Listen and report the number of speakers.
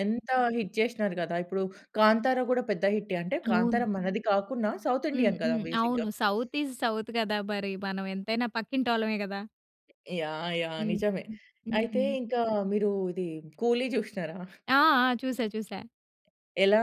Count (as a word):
two